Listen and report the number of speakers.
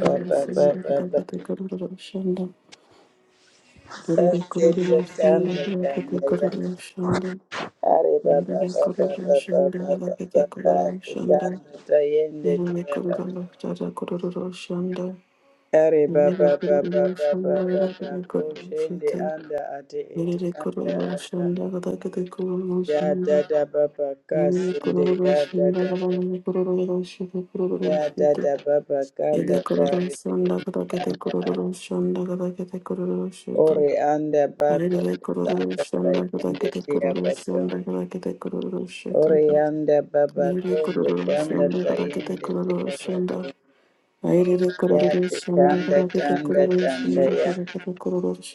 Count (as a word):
two